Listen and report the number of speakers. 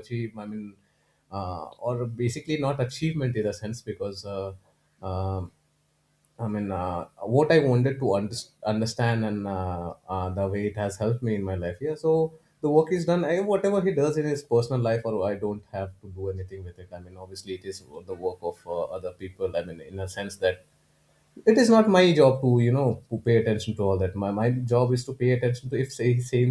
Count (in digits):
1